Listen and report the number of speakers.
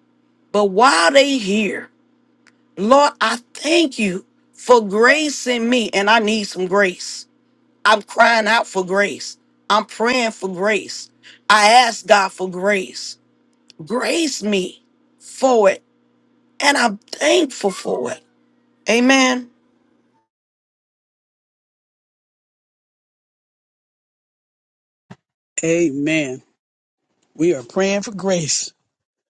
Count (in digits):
2